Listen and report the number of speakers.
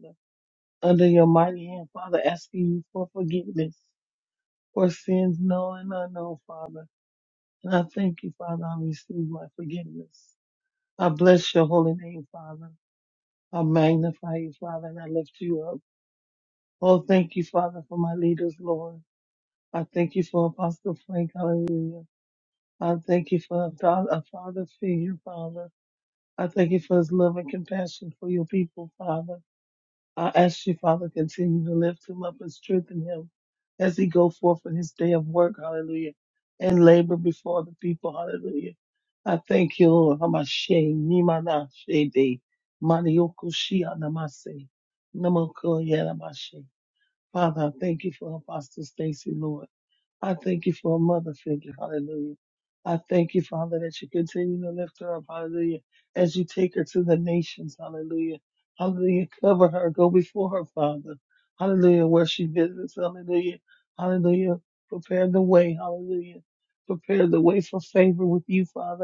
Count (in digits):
1